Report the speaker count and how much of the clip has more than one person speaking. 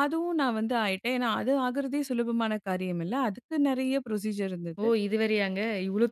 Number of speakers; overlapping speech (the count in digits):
2, about 2%